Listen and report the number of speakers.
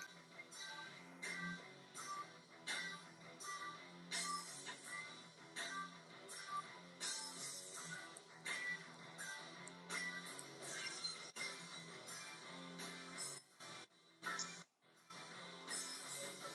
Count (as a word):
zero